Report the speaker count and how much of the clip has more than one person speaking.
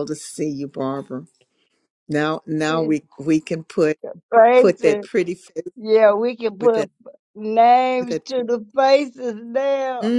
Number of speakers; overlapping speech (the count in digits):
2, about 12%